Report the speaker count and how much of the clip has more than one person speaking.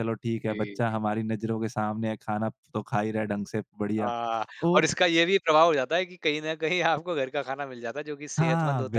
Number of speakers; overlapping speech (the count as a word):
two, about 15%